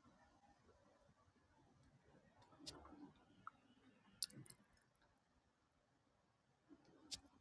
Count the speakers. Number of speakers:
0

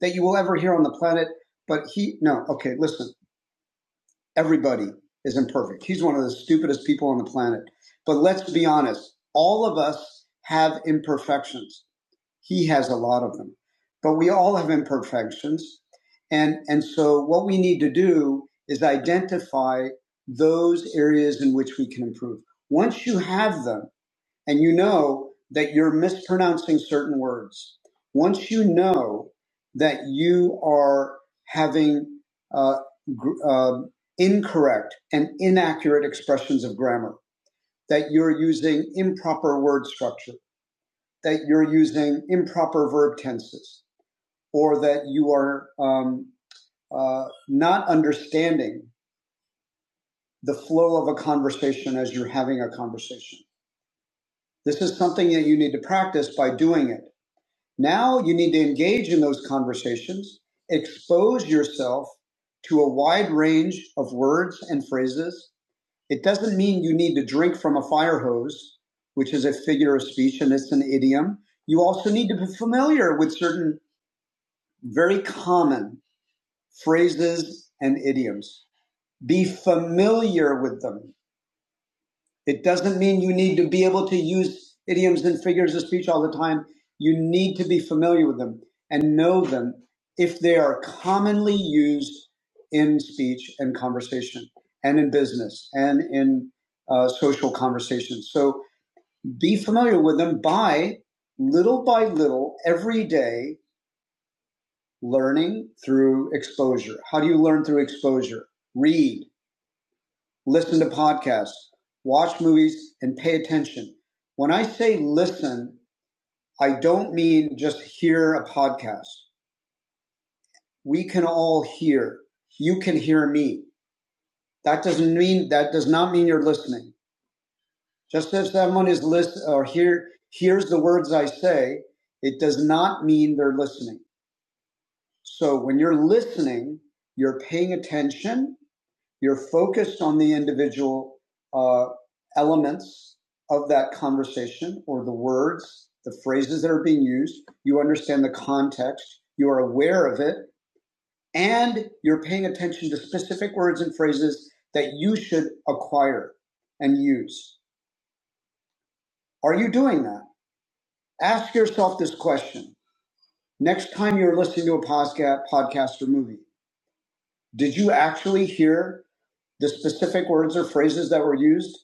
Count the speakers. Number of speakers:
1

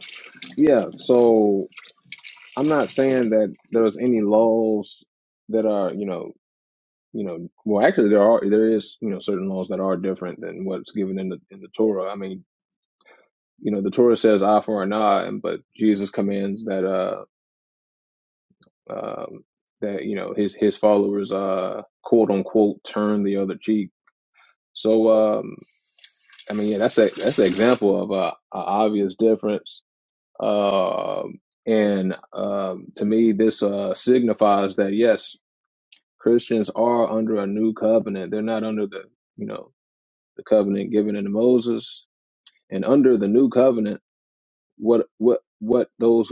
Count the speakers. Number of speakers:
1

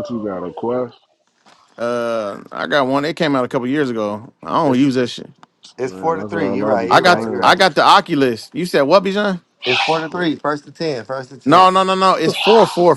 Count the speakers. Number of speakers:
3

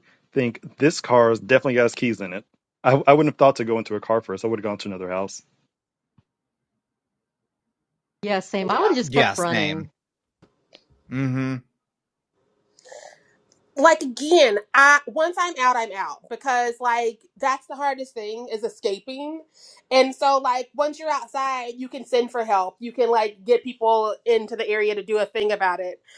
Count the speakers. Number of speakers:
4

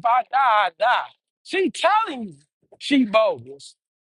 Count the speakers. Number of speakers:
1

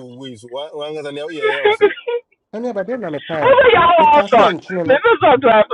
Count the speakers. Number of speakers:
3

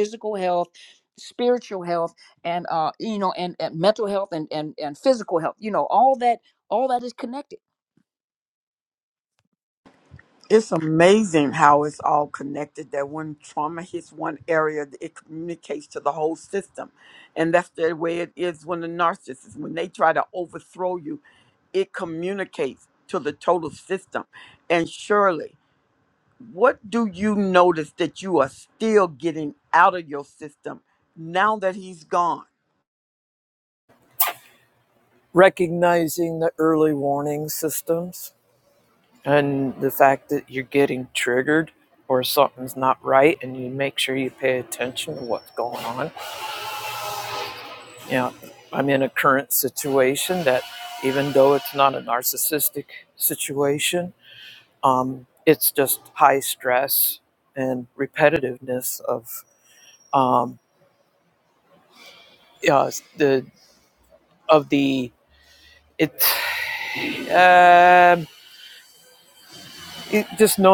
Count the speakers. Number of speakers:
3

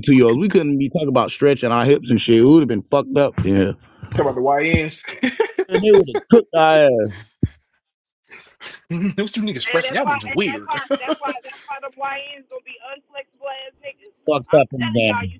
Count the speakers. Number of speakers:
3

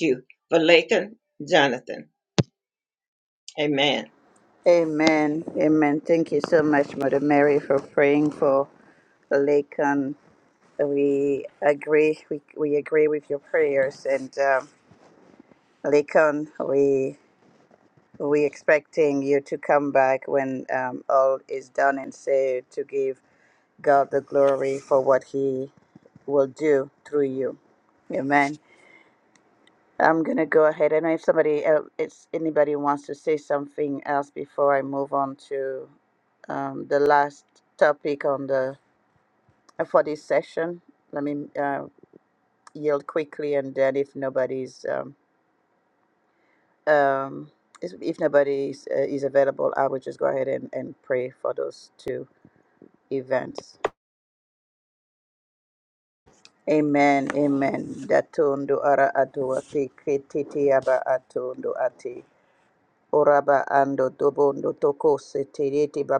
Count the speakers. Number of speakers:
2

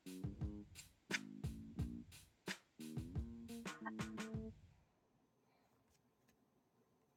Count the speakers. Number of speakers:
0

